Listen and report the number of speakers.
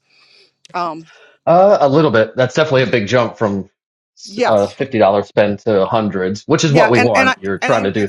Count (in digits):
2